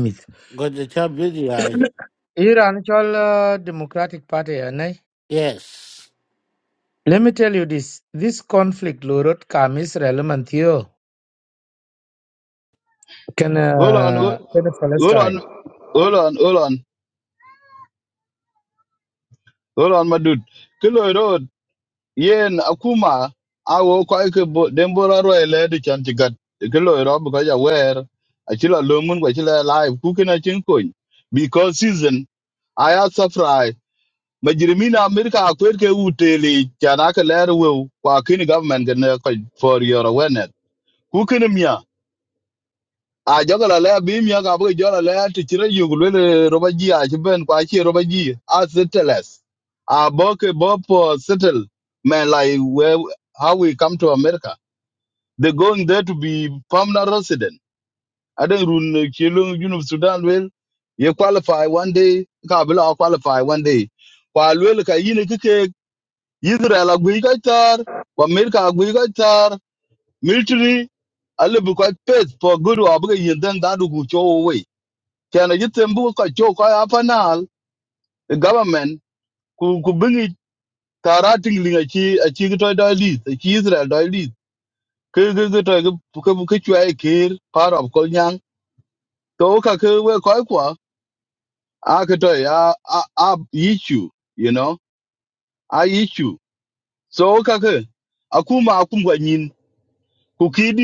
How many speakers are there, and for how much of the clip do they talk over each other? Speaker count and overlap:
3, about 1%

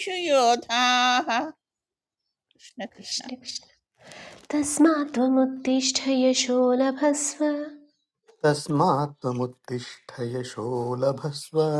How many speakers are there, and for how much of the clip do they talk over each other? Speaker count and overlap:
3, about 1%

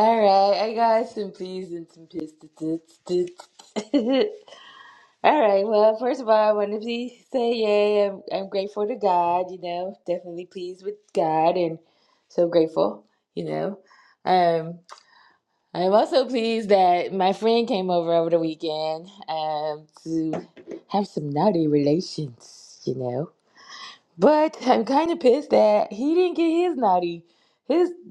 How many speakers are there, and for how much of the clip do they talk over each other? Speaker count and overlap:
1, no overlap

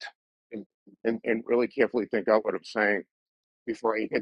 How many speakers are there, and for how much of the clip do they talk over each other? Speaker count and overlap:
1, no overlap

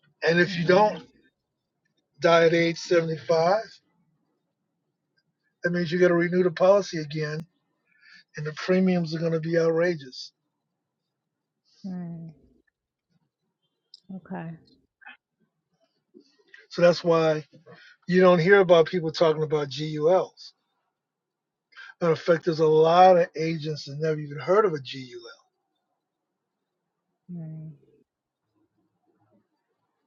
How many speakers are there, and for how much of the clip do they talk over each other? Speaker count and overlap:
2, about 2%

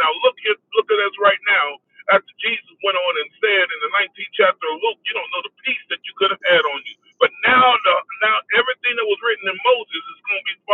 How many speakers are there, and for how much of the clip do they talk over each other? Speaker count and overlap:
1, no overlap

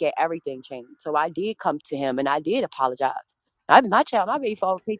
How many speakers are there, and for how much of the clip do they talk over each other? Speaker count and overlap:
1, no overlap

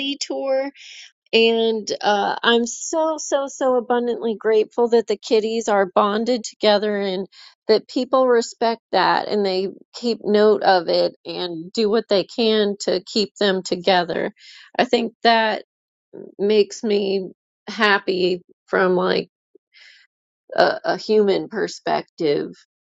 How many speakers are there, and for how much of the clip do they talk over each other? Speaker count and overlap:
1, no overlap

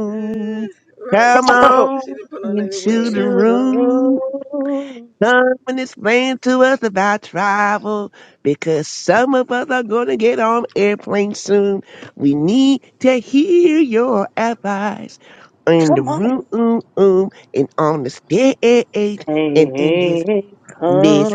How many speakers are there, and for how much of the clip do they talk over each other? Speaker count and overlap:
3, about 20%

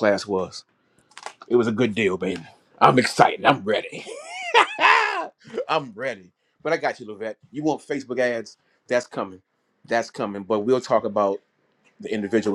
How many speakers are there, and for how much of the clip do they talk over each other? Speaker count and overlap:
1, no overlap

